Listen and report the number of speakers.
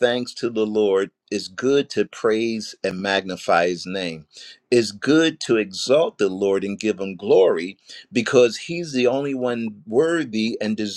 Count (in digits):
1